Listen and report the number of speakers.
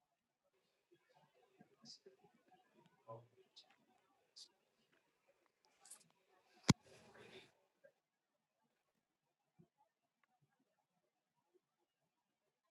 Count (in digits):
0